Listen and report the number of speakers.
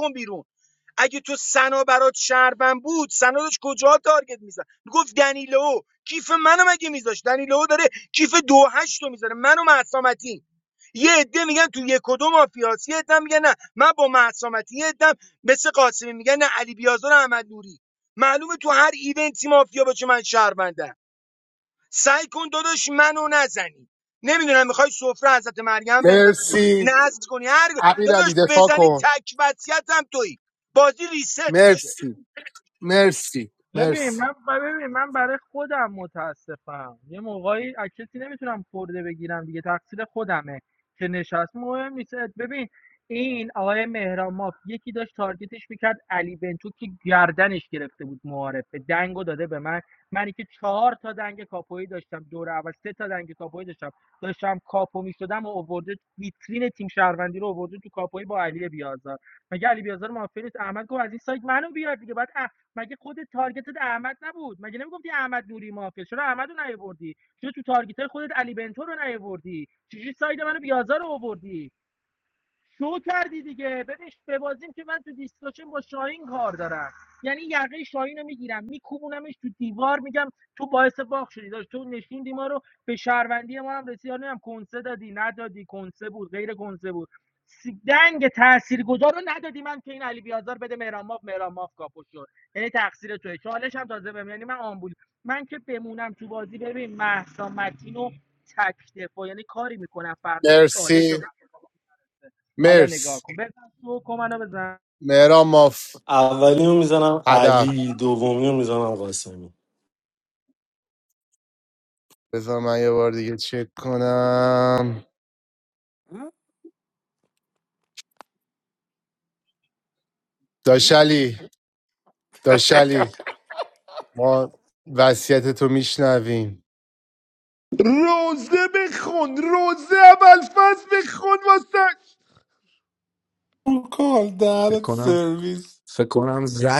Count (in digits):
7